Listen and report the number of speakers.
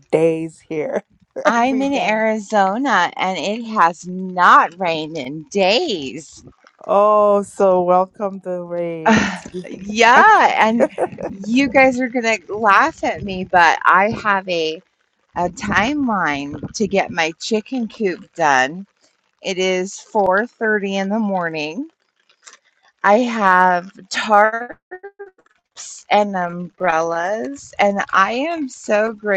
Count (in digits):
2